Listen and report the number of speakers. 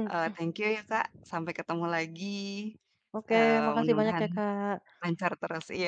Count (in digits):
2